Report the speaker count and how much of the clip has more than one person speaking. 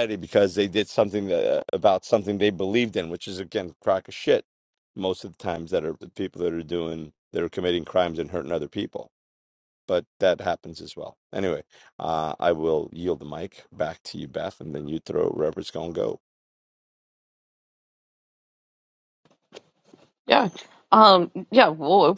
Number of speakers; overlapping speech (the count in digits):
2, no overlap